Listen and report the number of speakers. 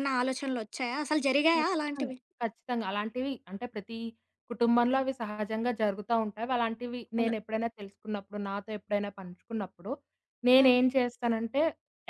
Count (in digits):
2